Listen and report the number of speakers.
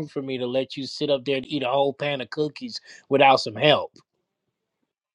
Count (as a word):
one